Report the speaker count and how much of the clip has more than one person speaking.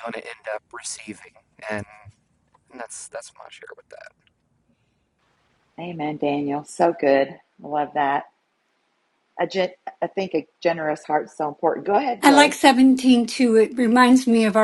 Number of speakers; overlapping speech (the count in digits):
3, about 2%